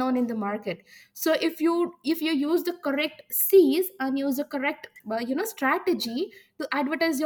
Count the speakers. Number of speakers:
1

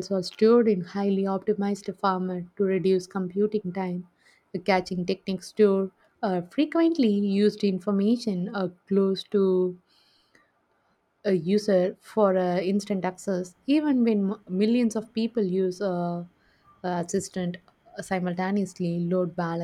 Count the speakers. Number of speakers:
1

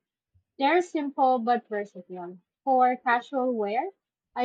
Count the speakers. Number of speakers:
1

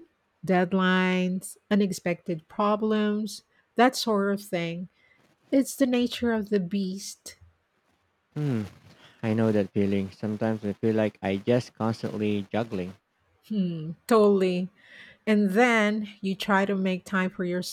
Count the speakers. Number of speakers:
2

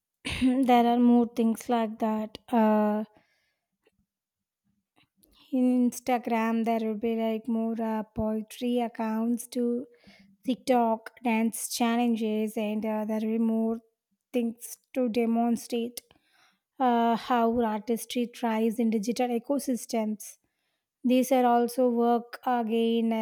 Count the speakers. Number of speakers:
1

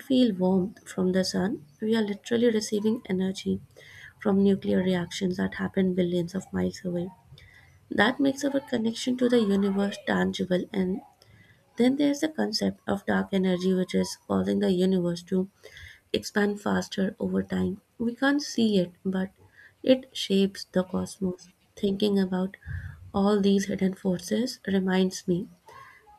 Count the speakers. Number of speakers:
1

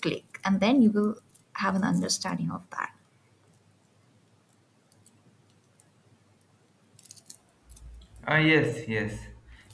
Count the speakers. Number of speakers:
2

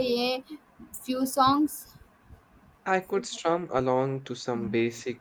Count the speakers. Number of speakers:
2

